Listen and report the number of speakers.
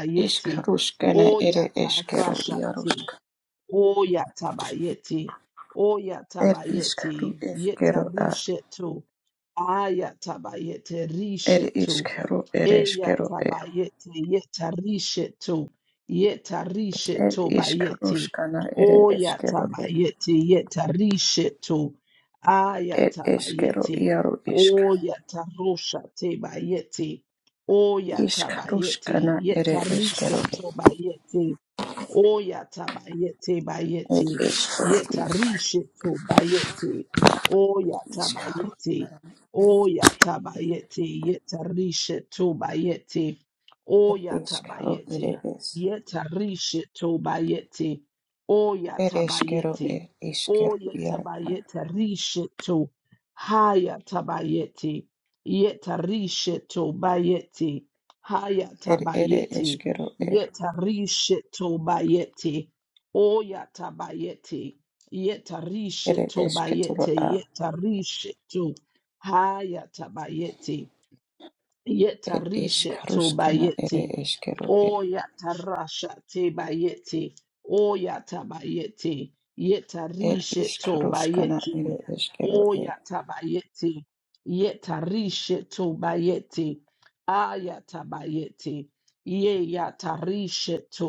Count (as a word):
two